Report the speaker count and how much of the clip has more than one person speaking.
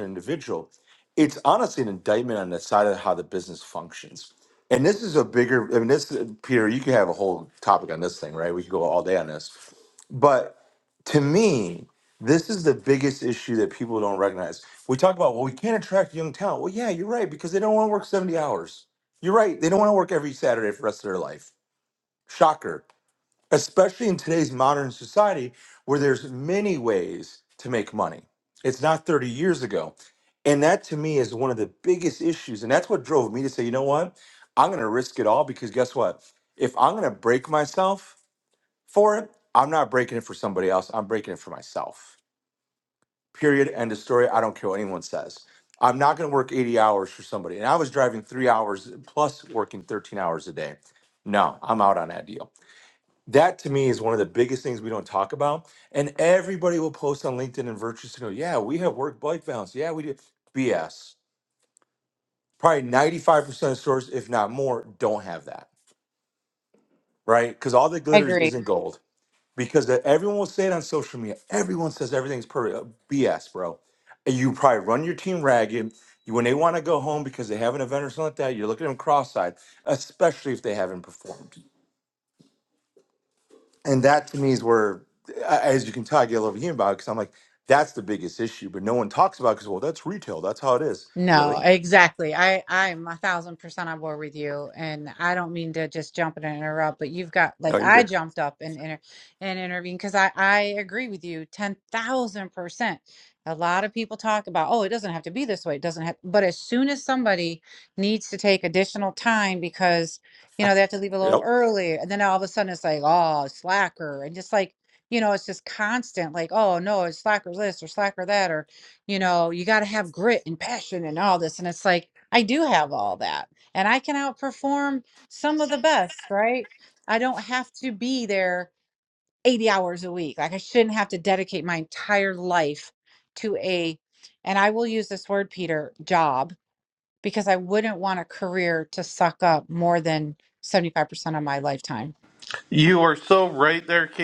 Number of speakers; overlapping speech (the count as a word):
three, about 1%